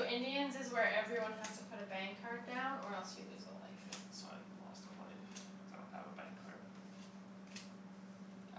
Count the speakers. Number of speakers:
2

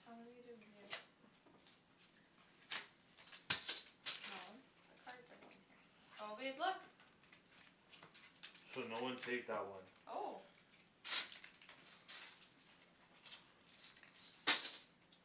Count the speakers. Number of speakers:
2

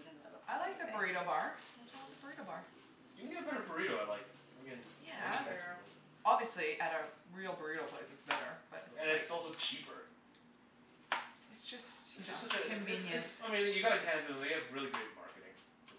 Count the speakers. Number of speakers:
3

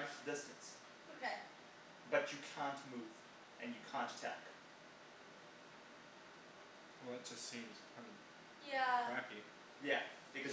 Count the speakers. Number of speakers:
3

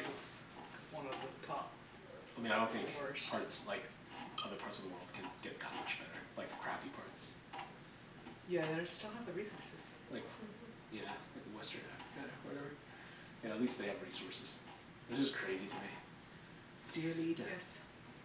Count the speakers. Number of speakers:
2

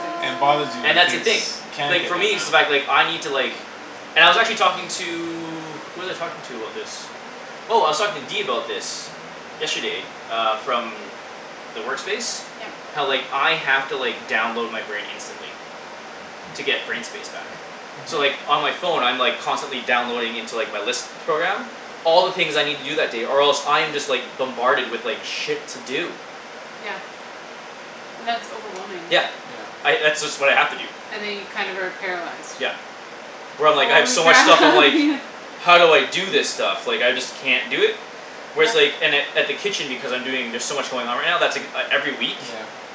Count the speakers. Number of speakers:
3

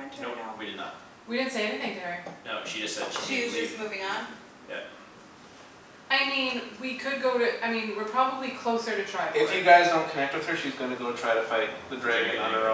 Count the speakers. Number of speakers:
4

